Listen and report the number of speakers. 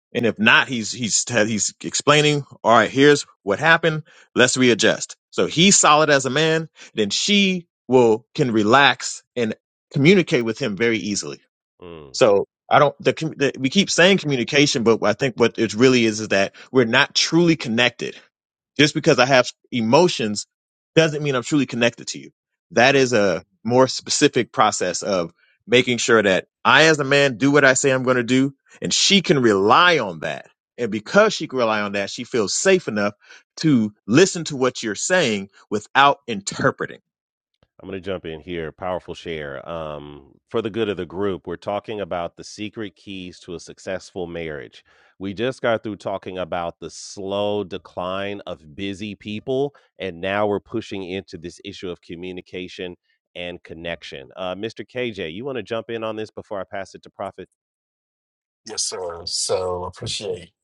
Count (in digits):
3